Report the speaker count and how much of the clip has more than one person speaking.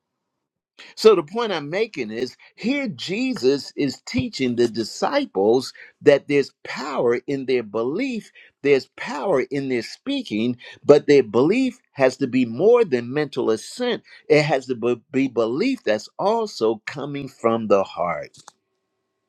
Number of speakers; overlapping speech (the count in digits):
1, no overlap